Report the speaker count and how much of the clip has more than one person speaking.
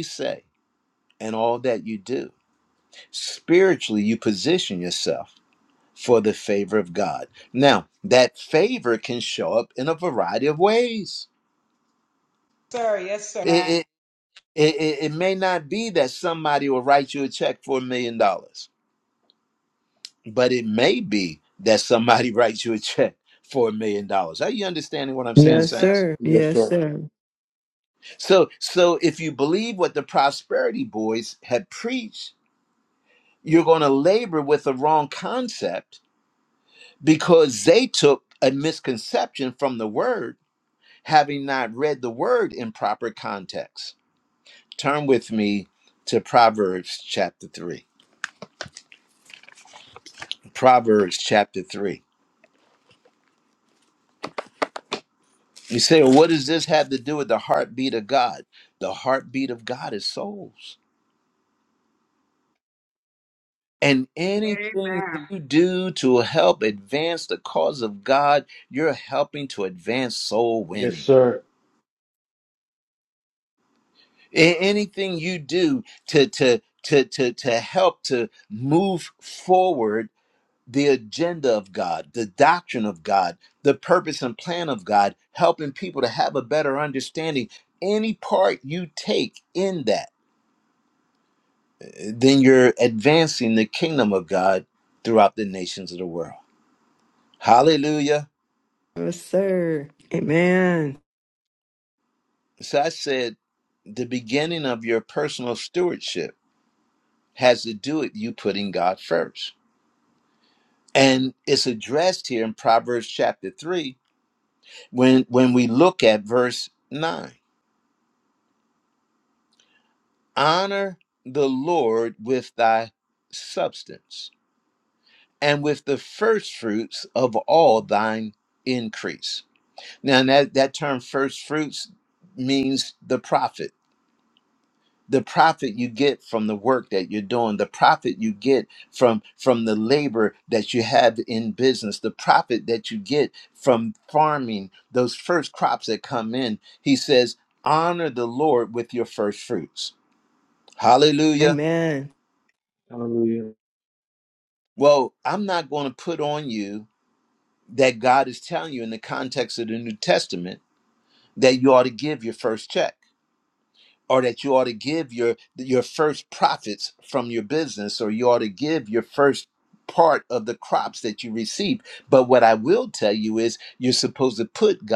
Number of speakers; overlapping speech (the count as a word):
four, about 1%